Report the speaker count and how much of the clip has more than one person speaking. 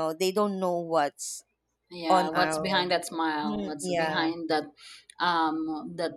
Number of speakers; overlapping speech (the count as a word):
two, about 27%